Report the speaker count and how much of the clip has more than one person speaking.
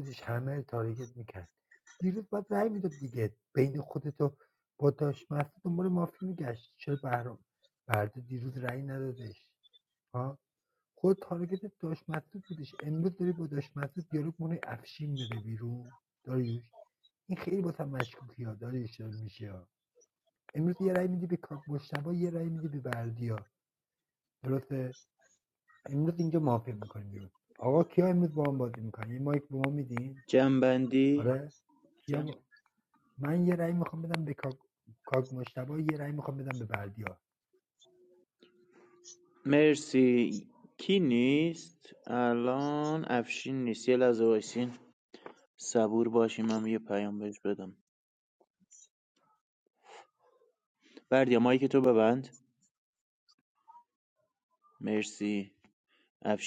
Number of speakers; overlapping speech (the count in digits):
2, under 1%